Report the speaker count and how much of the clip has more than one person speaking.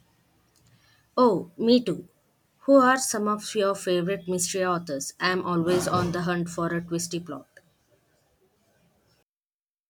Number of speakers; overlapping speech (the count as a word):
one, no overlap